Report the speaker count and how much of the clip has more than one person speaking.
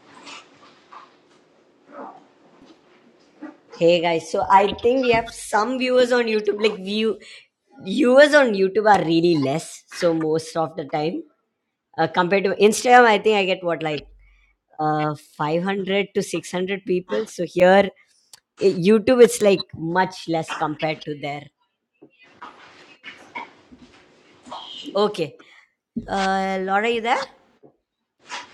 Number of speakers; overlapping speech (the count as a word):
one, no overlap